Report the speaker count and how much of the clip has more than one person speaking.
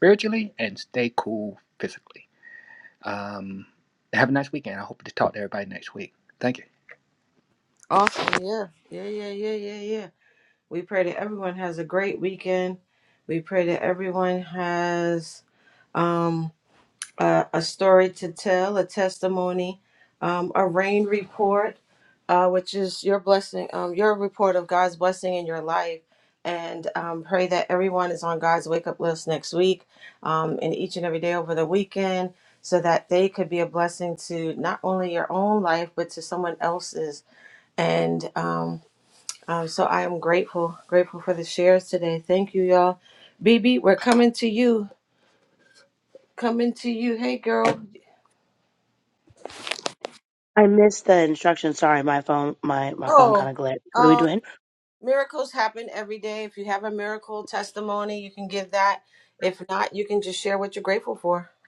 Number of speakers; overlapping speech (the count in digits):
3, about 1%